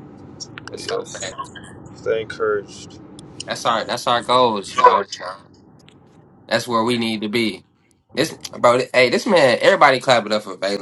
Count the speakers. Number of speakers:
2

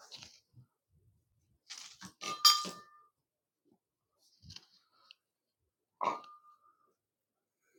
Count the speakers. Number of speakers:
0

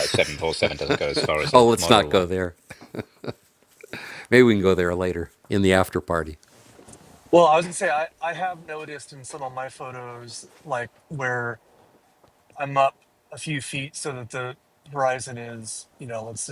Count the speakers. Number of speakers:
3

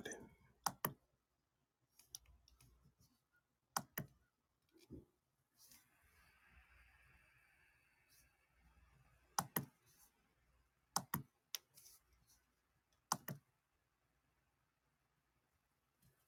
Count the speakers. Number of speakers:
0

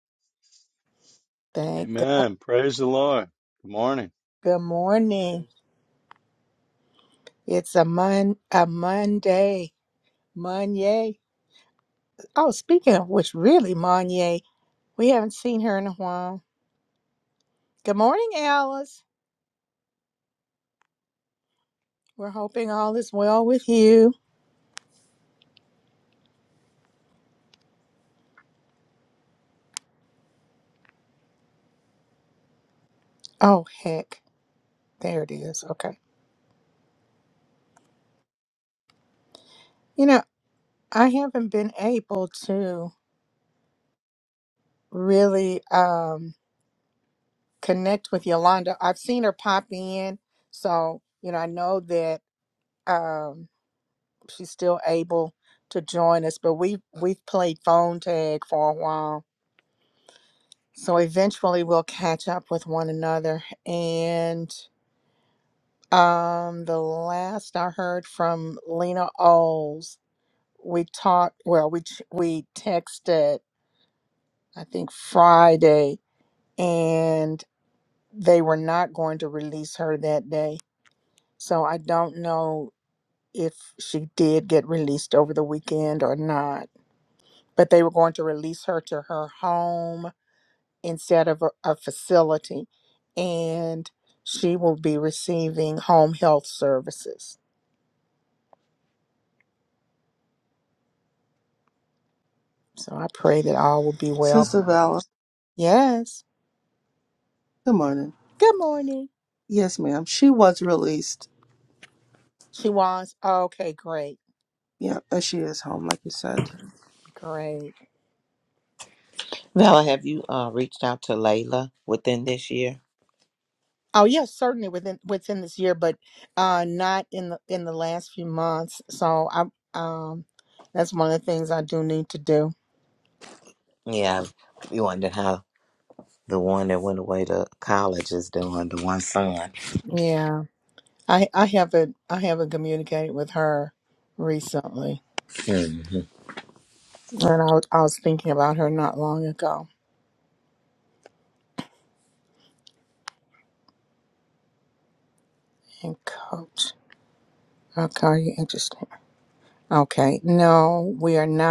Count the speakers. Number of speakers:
4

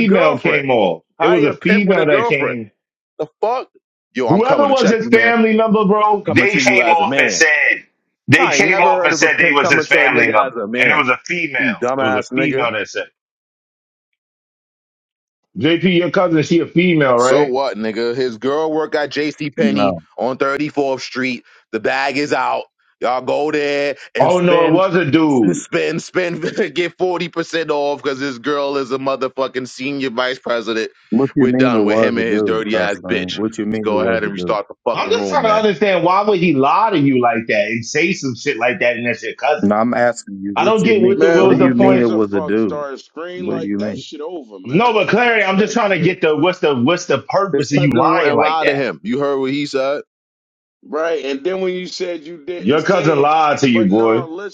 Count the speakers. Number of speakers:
4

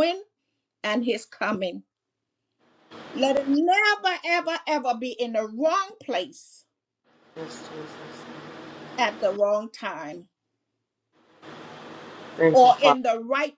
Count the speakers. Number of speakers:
2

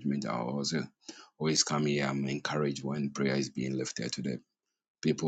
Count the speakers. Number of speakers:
1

